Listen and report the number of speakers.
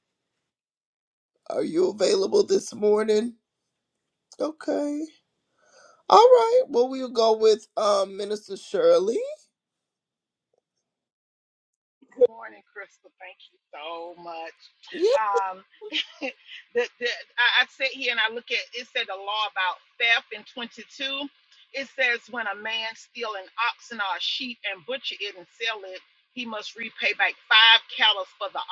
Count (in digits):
2